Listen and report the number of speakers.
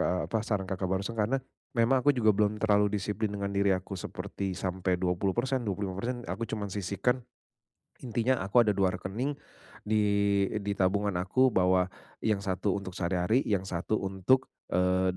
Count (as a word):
one